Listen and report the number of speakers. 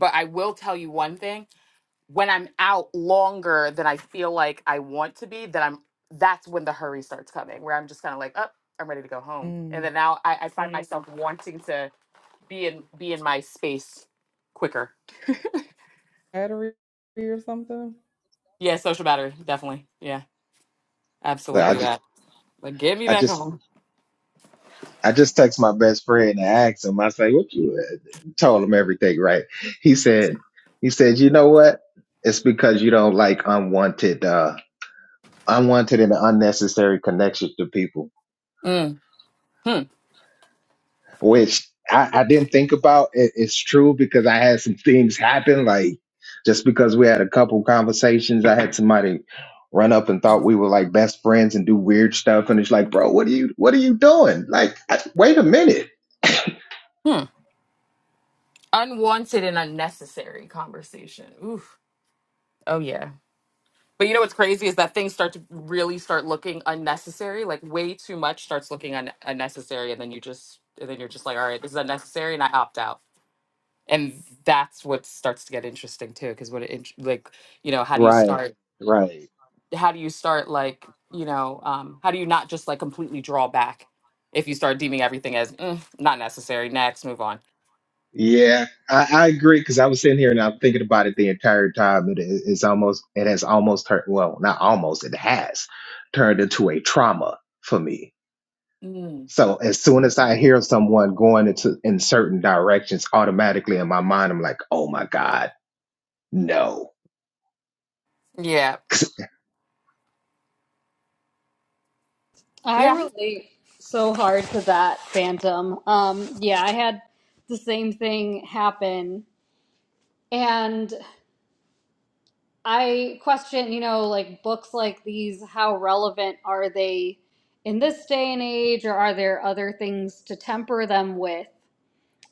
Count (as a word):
four